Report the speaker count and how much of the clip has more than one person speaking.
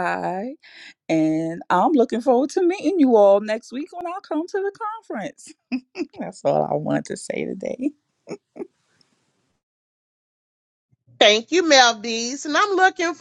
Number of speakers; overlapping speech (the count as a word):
two, no overlap